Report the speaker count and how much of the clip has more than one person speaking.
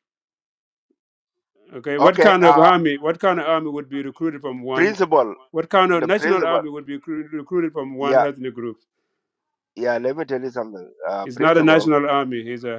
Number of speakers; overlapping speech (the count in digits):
2, about 19%